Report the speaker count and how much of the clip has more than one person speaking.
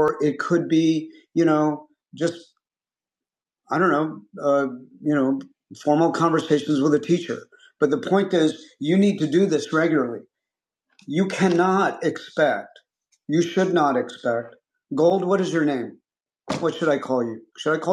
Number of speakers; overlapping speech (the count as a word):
one, no overlap